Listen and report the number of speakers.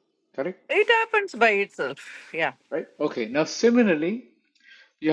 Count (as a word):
two